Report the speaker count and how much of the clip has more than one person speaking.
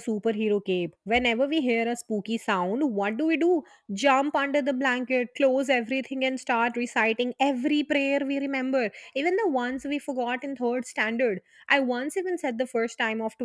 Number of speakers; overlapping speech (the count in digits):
1, no overlap